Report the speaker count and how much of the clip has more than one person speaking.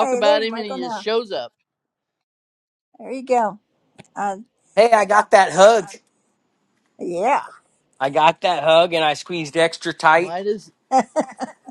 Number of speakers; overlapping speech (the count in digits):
3, about 10%